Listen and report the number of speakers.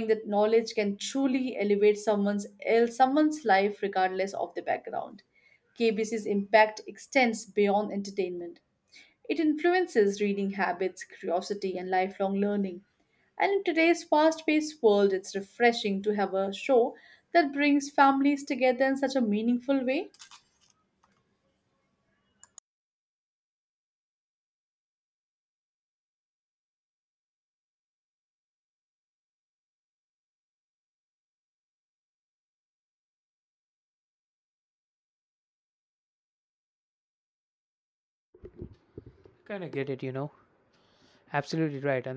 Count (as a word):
two